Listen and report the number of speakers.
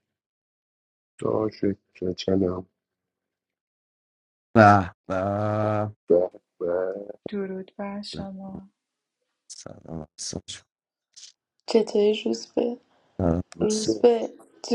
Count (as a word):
four